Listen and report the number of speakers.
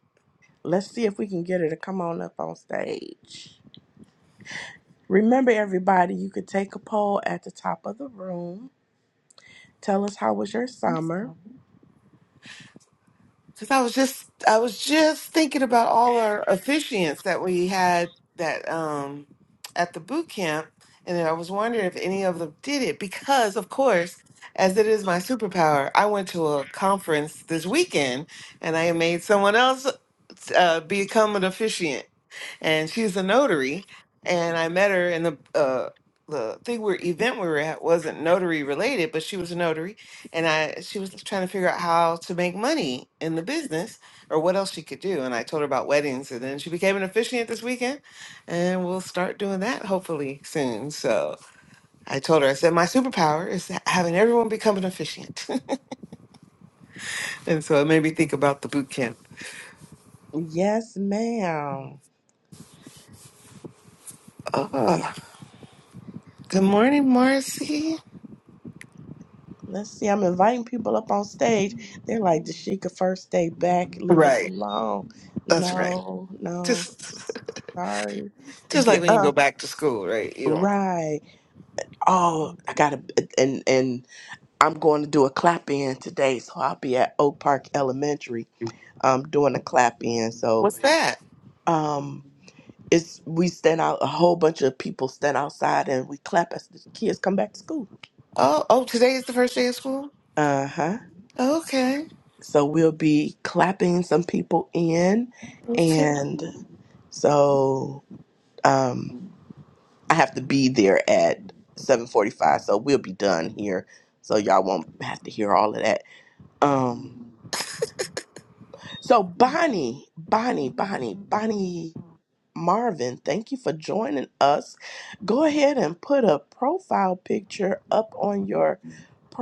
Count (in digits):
2